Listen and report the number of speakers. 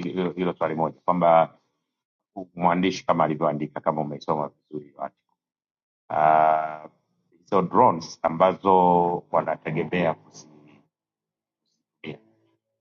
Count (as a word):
one